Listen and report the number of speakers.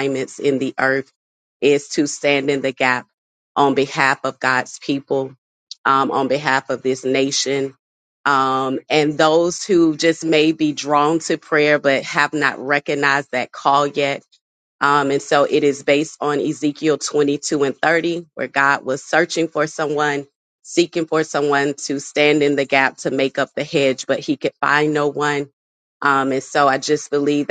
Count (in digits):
1